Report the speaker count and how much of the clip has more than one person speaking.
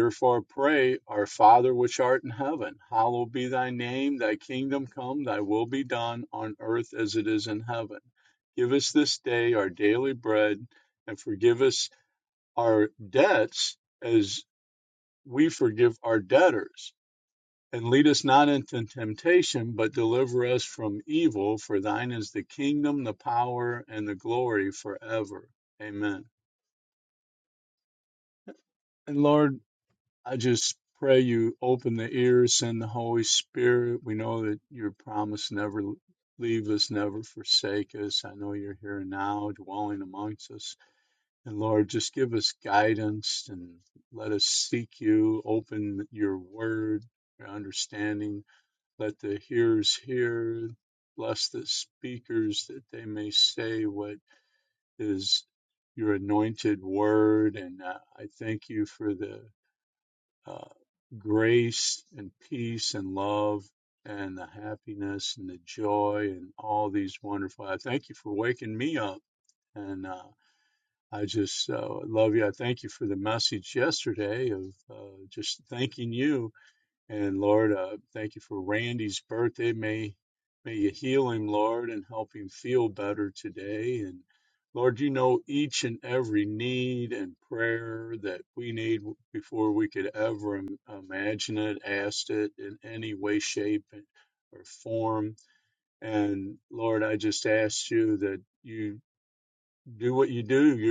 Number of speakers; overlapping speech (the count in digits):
1, no overlap